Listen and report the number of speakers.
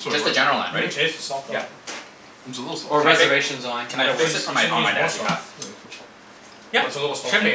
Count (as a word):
four